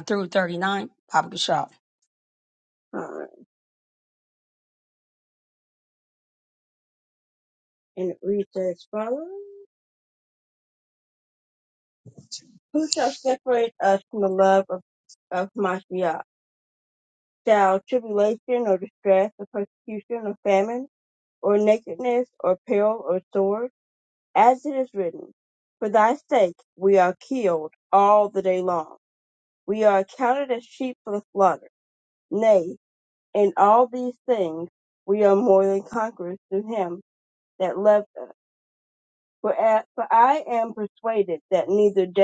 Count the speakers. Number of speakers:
2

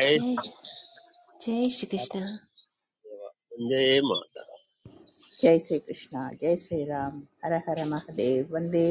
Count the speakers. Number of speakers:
3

